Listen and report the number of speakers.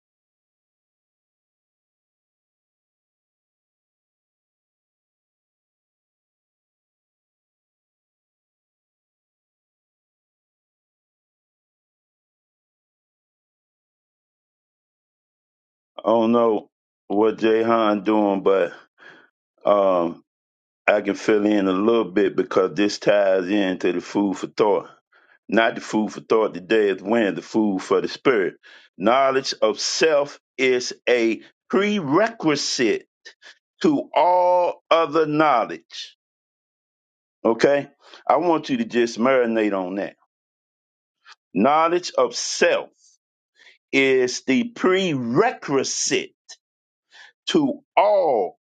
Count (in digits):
1